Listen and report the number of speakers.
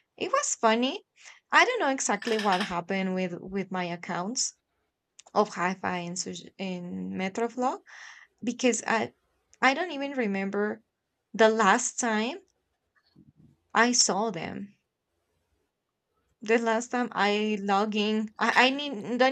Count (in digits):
1